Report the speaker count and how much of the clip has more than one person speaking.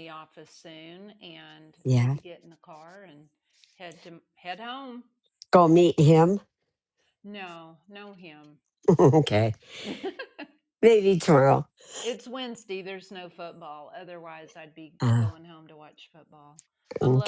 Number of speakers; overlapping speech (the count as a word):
two, about 5%